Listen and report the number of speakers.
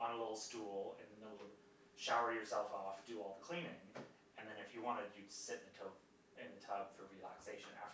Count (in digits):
1